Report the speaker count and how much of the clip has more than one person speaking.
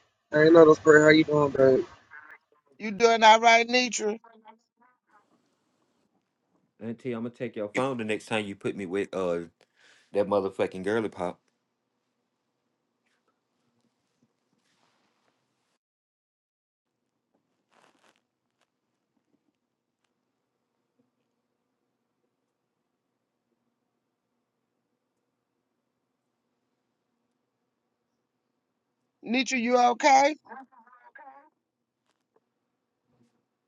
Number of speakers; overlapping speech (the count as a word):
three, no overlap